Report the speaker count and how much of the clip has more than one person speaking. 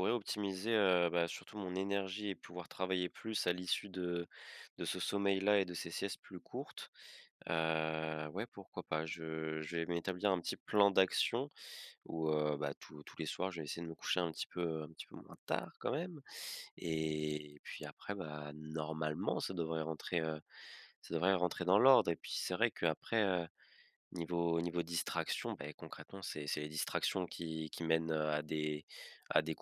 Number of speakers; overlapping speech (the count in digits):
1, no overlap